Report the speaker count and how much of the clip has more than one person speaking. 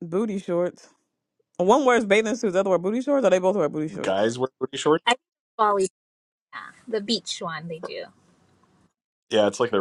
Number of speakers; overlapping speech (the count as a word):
three, about 1%